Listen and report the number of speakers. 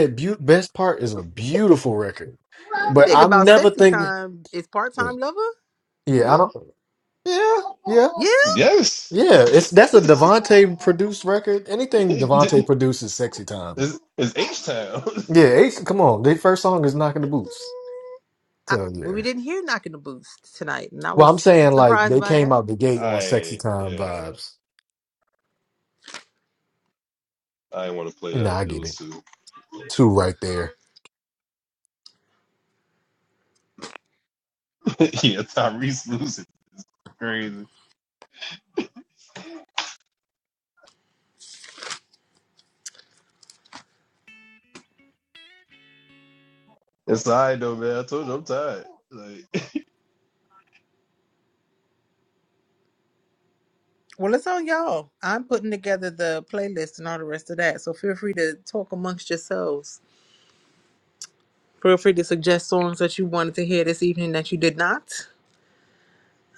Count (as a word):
three